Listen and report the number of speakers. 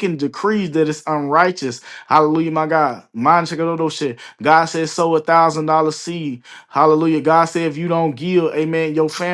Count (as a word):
one